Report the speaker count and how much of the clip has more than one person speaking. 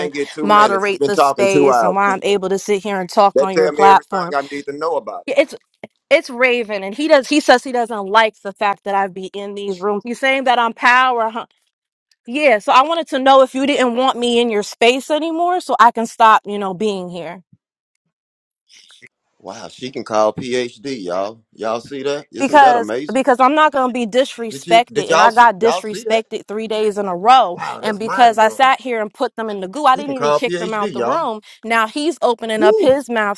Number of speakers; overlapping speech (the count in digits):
2, about 23%